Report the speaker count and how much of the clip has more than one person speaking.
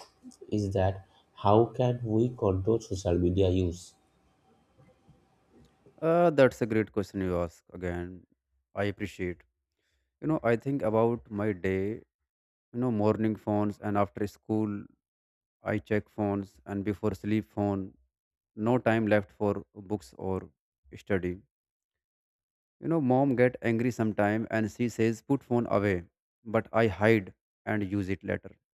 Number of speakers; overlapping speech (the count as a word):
two, no overlap